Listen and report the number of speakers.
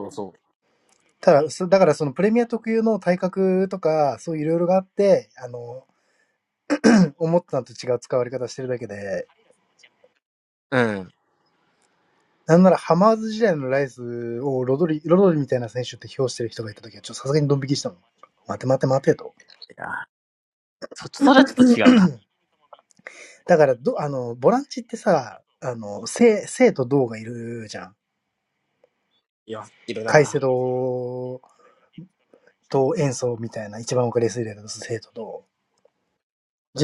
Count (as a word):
two